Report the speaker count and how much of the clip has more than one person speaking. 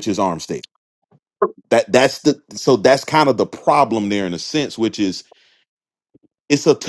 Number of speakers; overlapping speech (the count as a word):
one, no overlap